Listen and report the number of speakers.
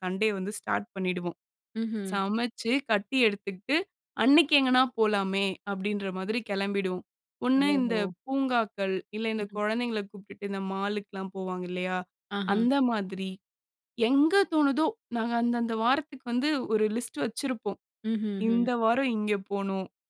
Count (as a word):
two